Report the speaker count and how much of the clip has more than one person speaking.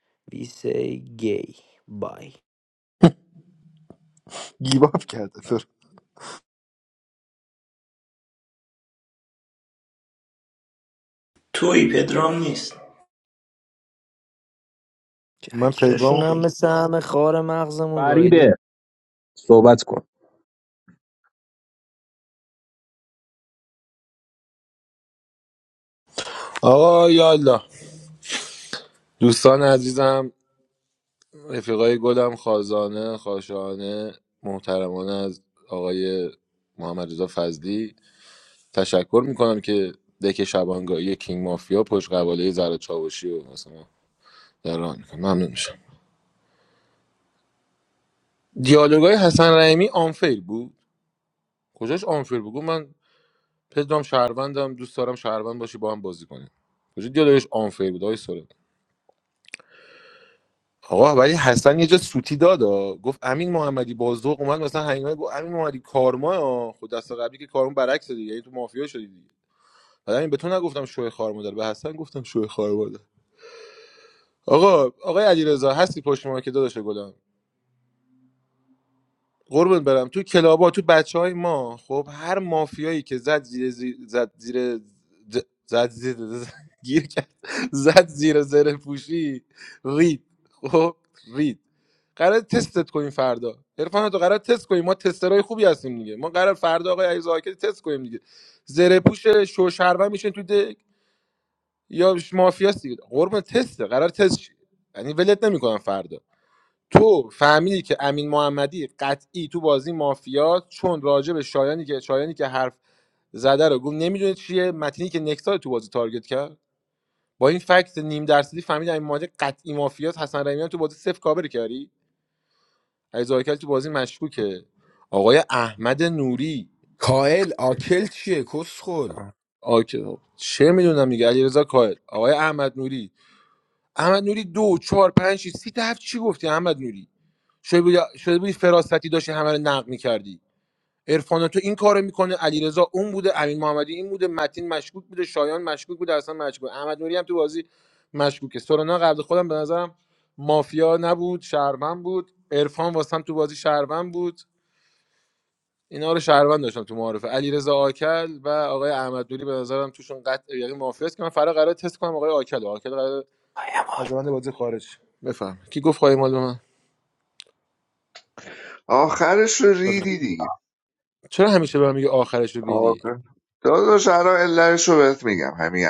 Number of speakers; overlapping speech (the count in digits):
6, about 1%